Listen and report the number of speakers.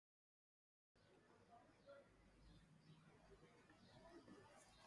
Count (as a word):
zero